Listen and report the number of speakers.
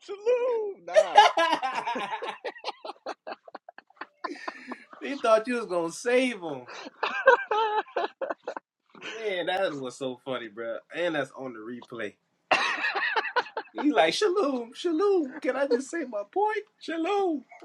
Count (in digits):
2